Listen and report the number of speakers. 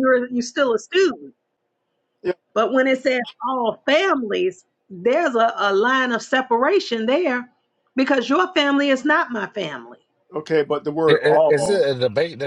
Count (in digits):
3